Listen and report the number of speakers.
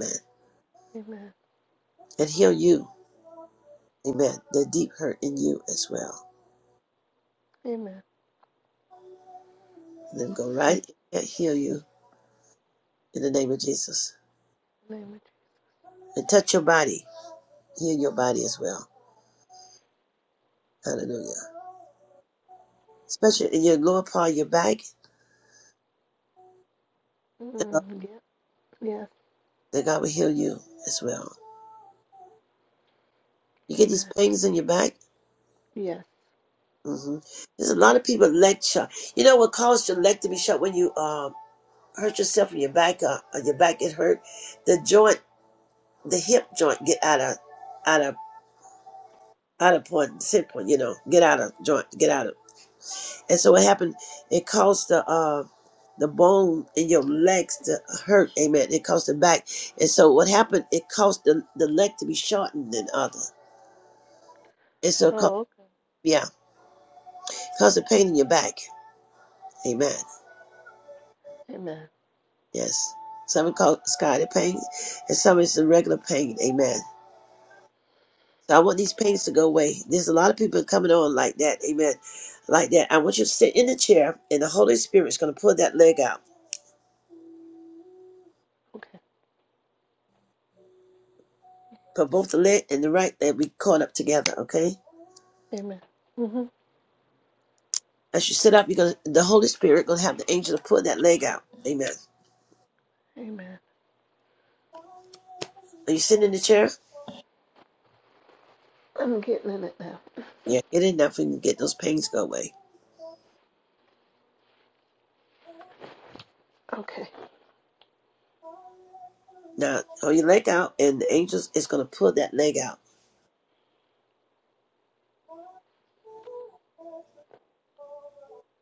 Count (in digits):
2